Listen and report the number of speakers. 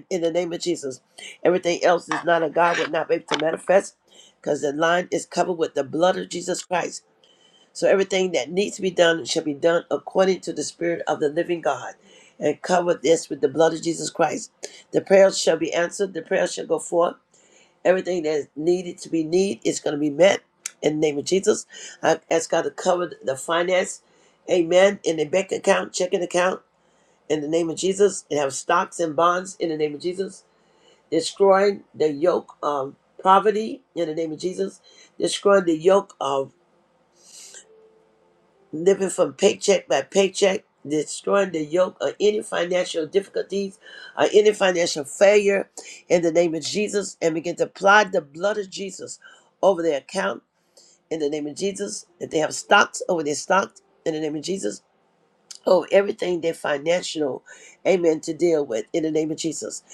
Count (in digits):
1